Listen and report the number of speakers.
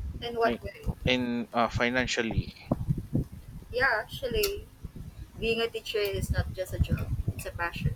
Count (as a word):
two